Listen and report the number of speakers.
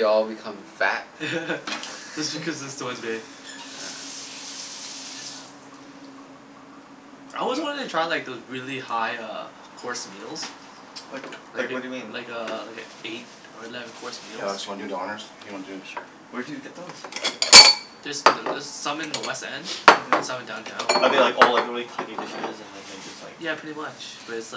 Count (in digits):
4